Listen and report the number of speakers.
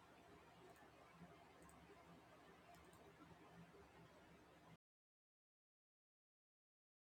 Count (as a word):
zero